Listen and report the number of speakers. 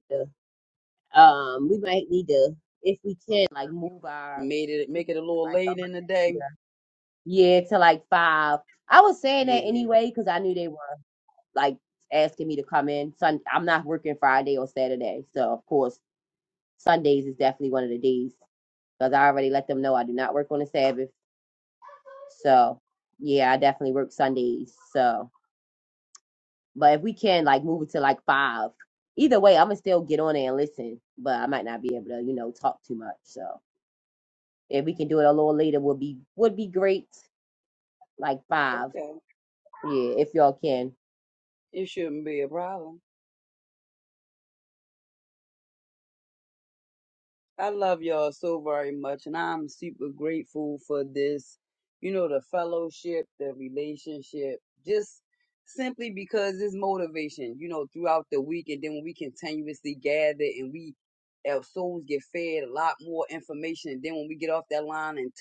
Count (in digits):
2